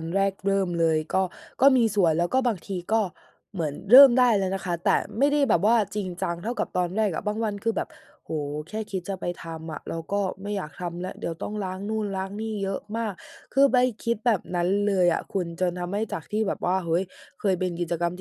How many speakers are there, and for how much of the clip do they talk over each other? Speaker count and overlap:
one, no overlap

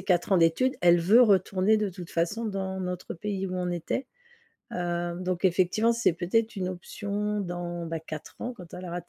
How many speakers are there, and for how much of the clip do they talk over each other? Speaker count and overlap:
one, no overlap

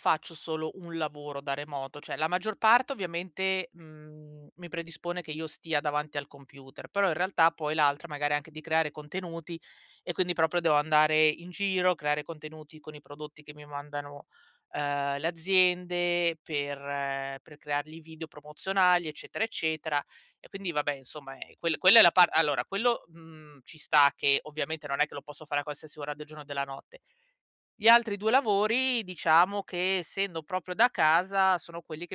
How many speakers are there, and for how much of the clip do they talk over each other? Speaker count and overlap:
one, no overlap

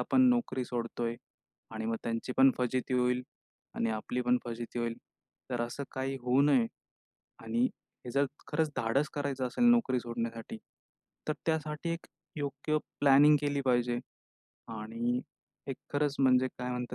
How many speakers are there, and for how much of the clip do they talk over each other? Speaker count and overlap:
one, no overlap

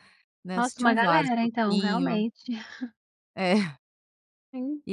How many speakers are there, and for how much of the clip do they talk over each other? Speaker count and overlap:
two, about 34%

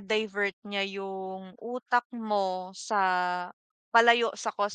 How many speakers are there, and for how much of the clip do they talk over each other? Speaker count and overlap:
one, no overlap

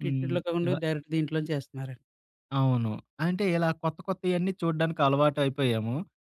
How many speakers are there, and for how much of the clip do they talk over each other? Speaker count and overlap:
two, about 12%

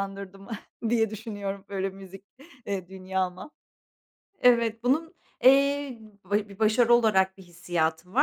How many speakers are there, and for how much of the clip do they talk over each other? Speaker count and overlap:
two, no overlap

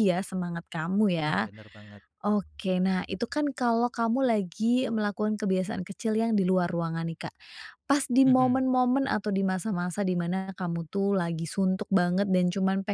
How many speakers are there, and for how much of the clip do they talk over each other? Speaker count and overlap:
two, about 5%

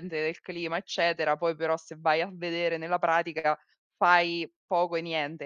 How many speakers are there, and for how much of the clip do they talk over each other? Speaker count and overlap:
one, no overlap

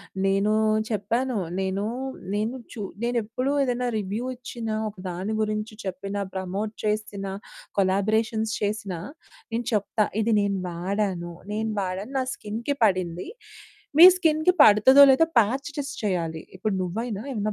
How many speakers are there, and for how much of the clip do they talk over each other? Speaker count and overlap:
one, no overlap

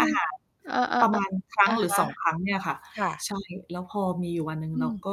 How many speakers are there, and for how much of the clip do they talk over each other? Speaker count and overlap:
two, about 19%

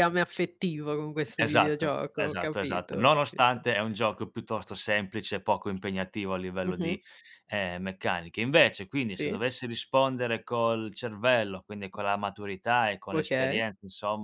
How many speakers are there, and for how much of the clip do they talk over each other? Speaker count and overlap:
two, about 23%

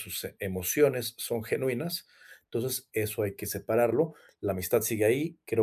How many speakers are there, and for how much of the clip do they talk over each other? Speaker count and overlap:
one, no overlap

